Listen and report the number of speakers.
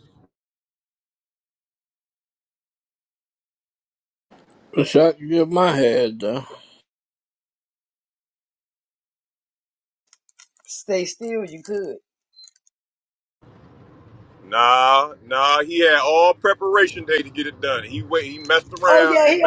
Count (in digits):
3